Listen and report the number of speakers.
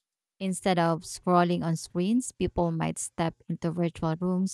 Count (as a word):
one